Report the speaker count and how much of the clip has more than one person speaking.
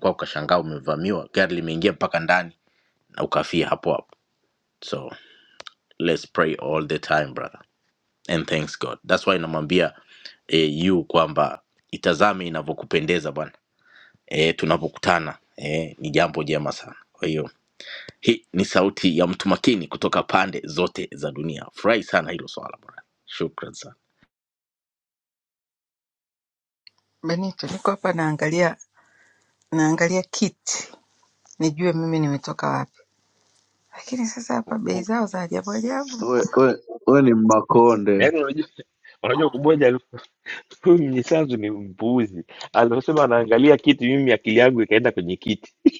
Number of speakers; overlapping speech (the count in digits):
4, under 1%